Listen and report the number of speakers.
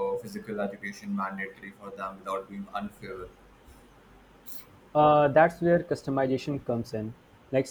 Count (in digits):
2